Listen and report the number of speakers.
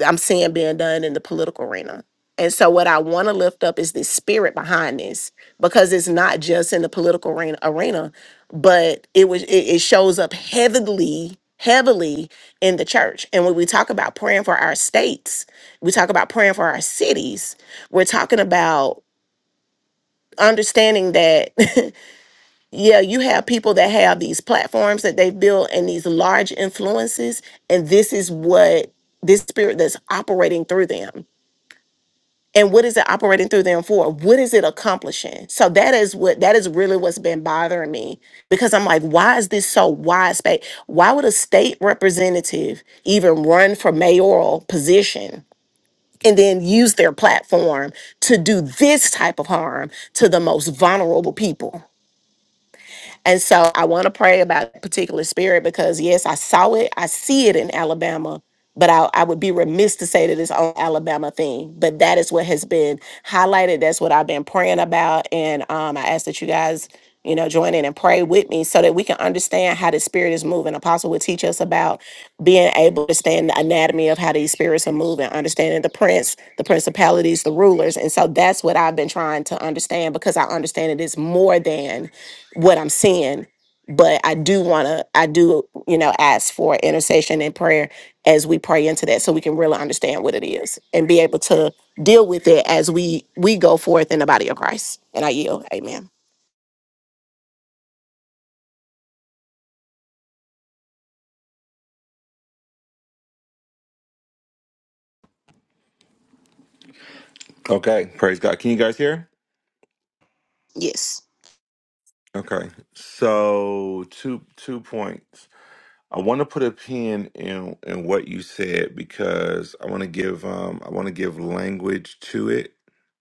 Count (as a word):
two